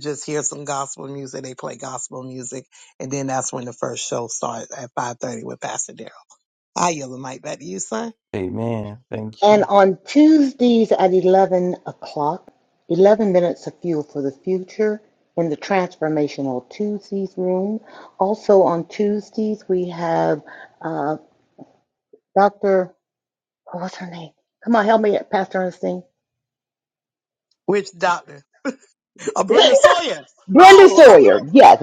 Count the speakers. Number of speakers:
three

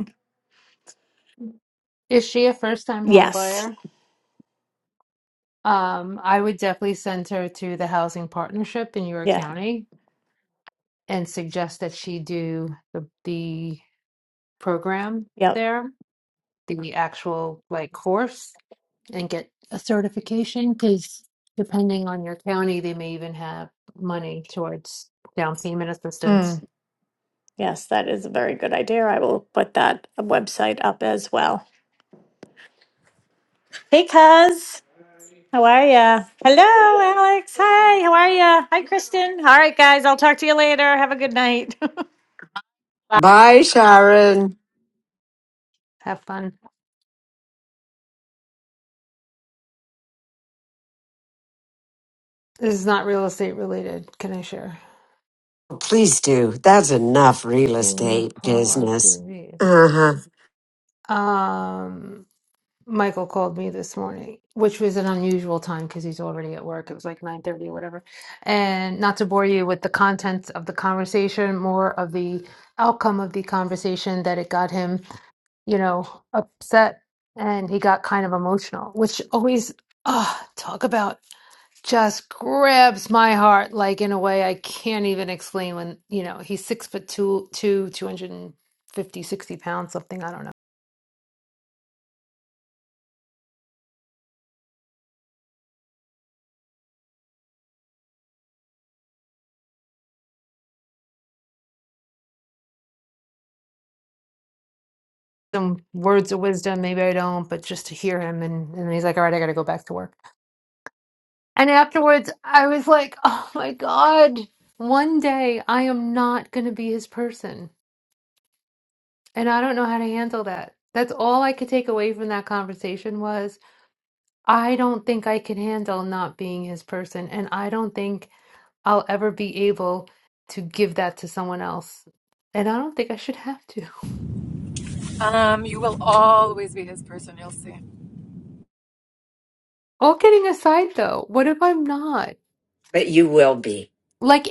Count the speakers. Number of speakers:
four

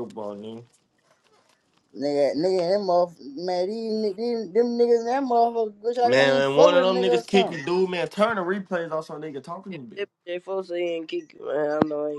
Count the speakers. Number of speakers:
three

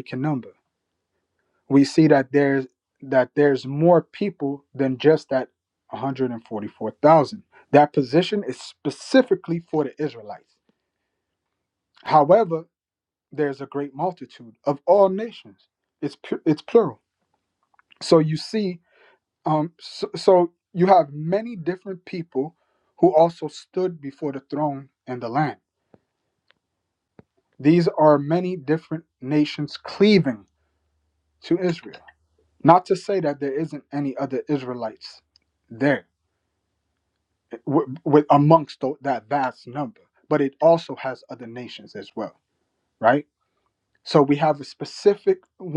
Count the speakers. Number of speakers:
one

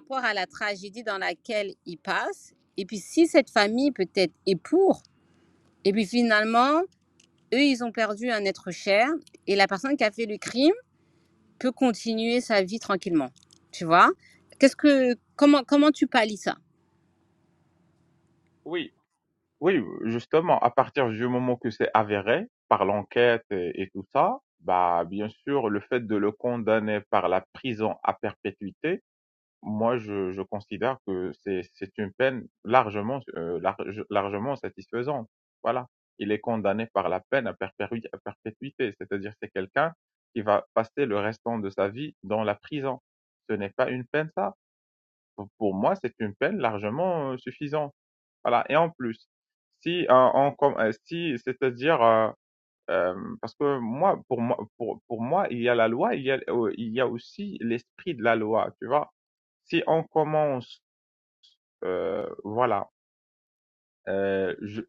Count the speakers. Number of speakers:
two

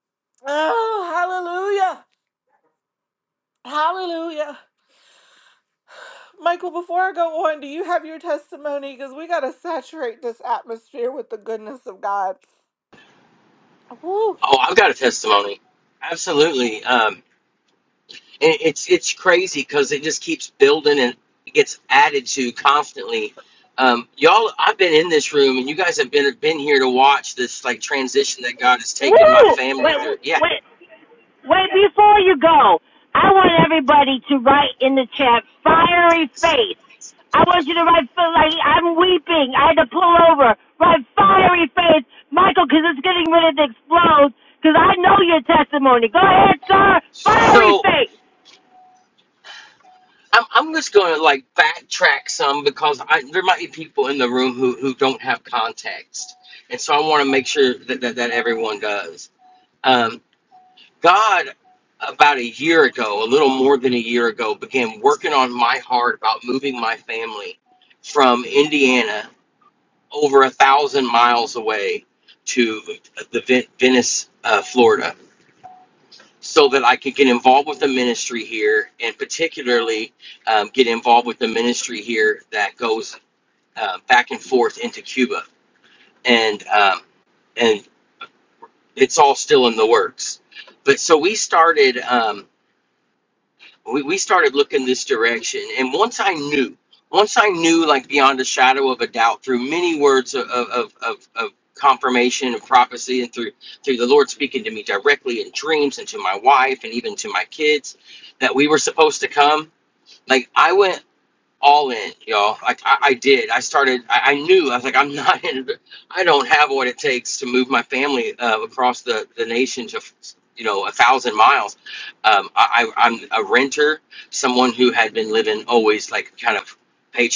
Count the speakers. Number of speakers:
three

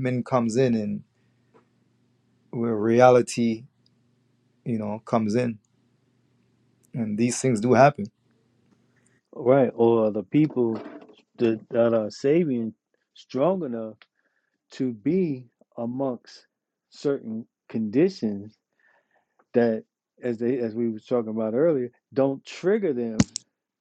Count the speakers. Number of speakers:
two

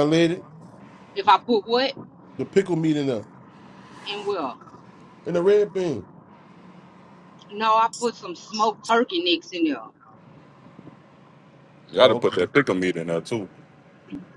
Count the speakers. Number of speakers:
three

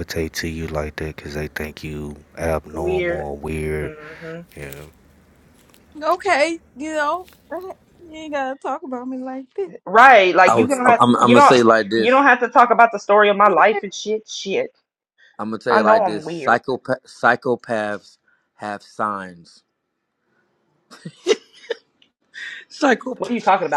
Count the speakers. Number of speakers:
four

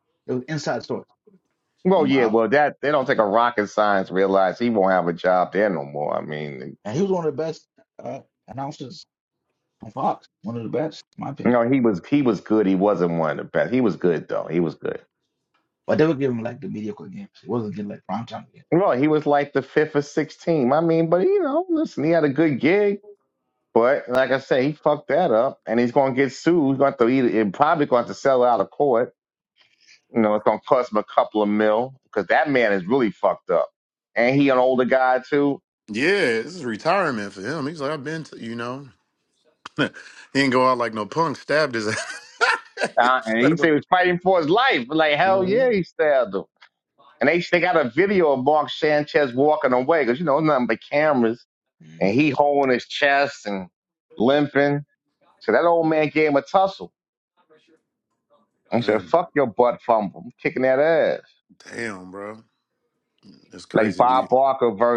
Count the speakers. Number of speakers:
three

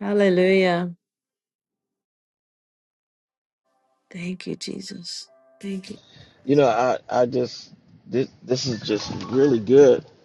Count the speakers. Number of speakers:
two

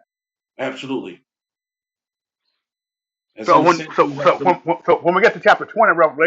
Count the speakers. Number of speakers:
two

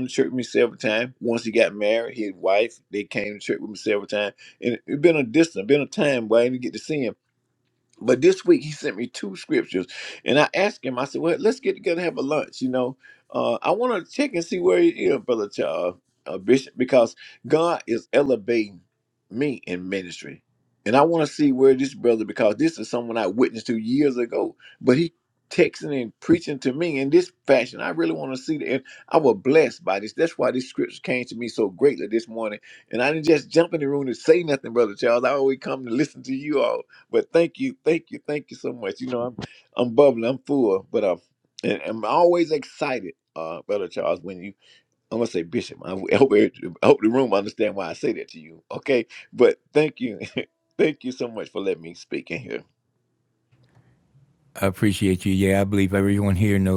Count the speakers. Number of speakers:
two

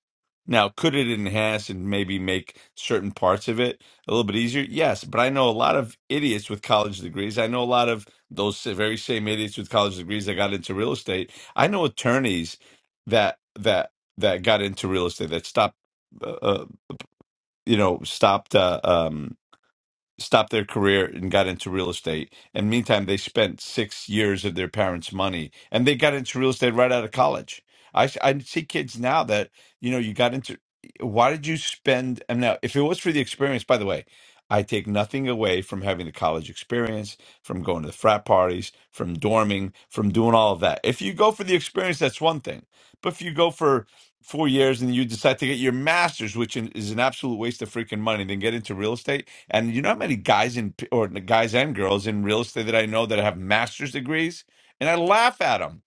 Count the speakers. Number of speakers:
one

